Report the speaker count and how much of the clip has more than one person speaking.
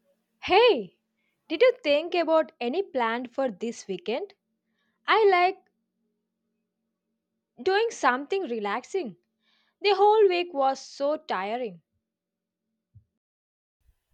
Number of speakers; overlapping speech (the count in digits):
1, no overlap